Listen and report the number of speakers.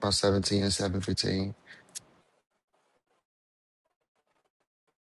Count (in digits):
1